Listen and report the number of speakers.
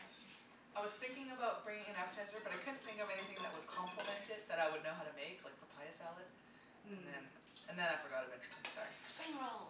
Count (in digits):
2